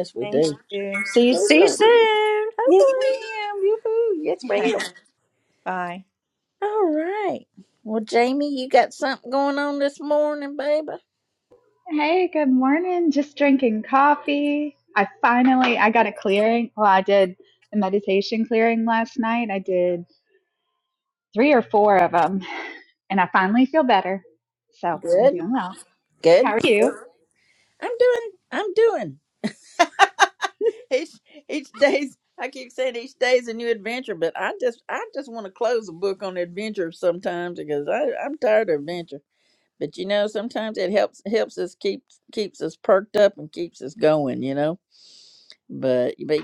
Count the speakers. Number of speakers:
3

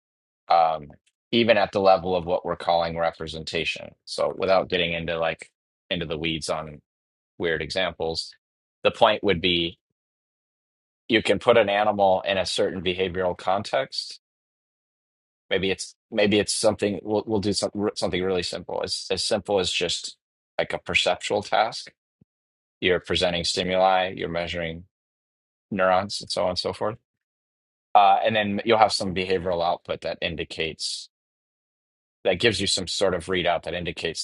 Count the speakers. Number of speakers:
1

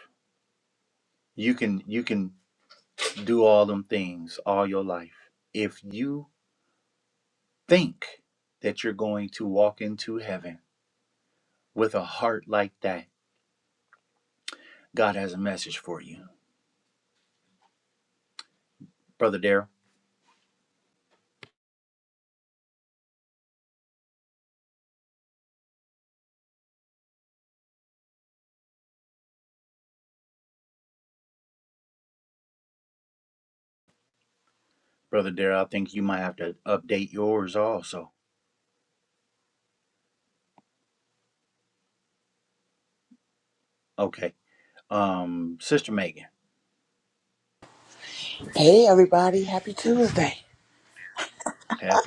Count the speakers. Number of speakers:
2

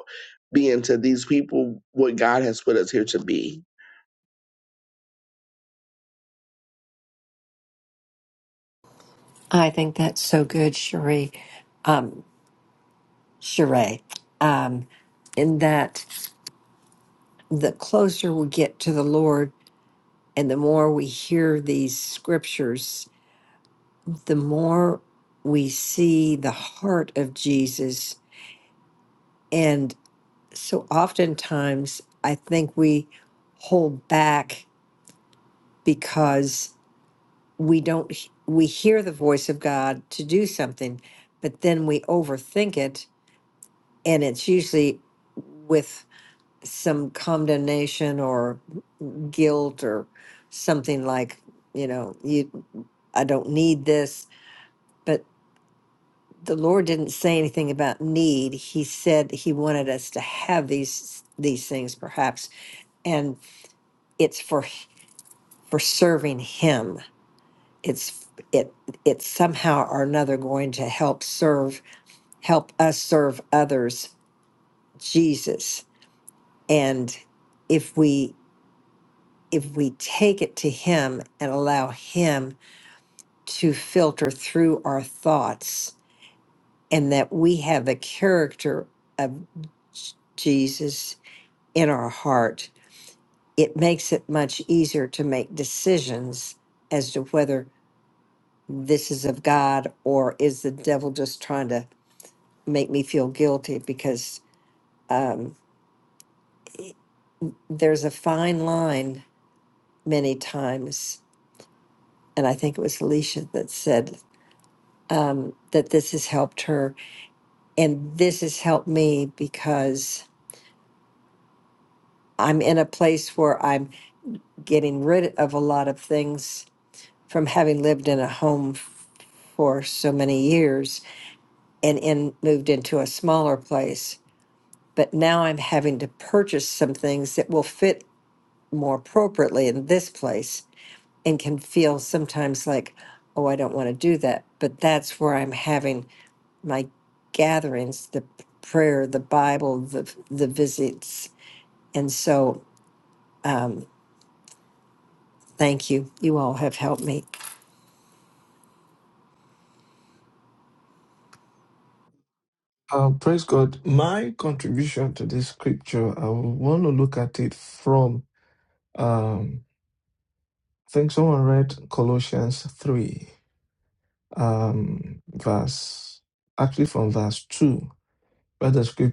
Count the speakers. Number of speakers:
3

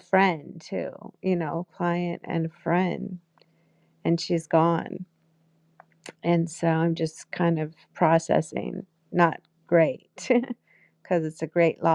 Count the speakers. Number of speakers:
1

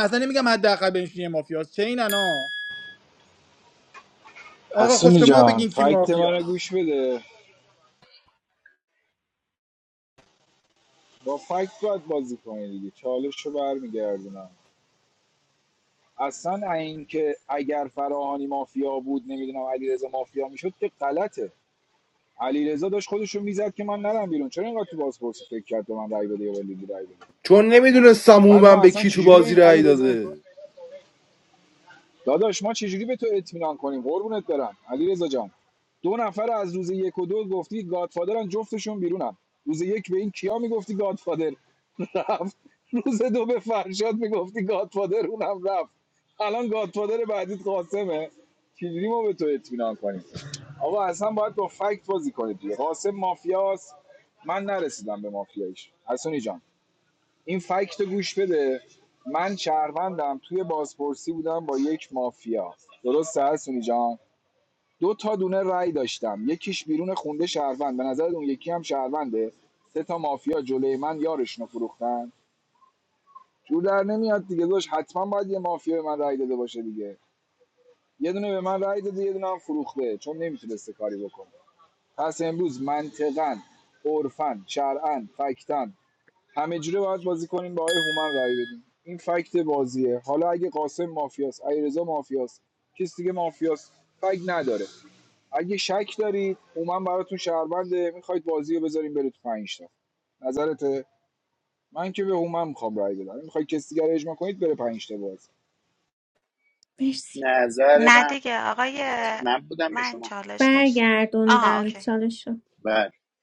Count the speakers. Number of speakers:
6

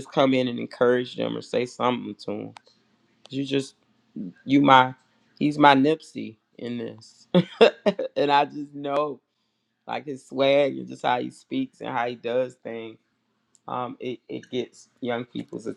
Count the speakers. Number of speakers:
1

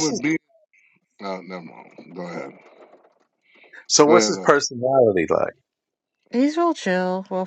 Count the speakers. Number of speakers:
3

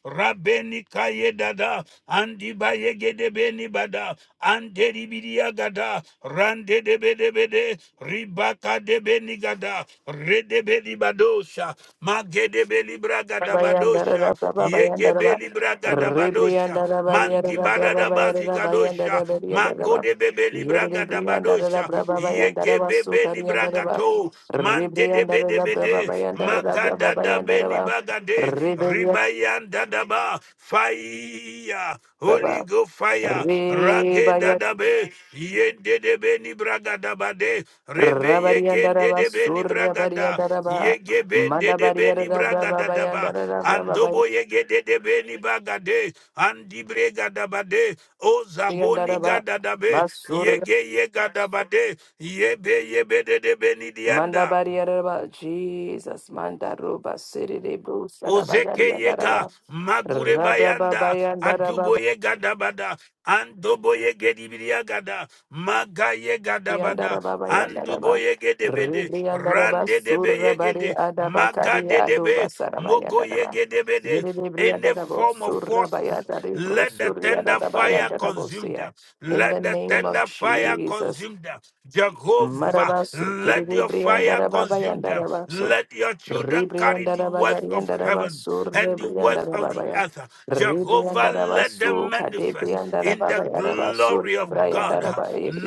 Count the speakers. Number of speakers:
2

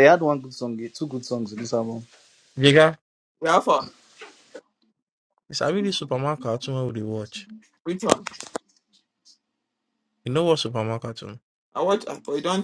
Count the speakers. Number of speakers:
3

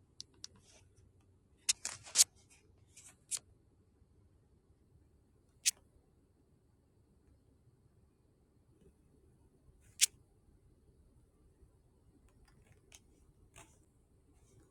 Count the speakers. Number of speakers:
0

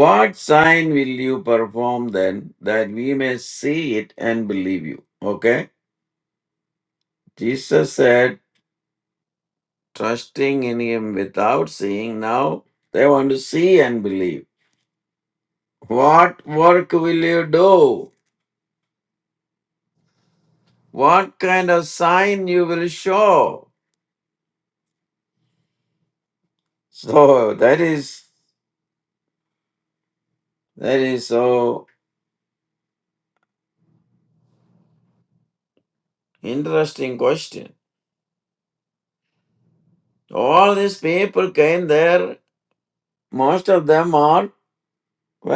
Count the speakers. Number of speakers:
1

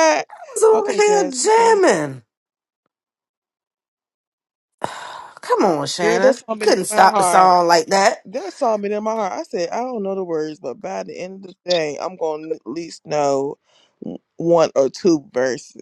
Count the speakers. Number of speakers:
2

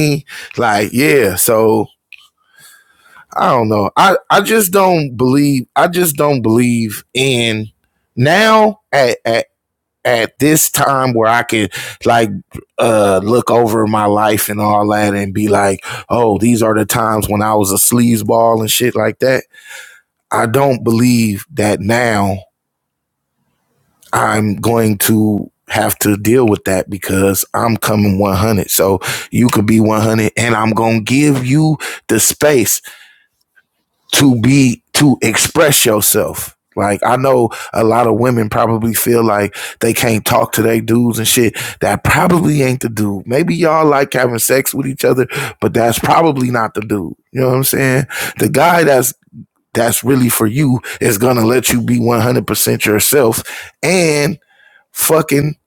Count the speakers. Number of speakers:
1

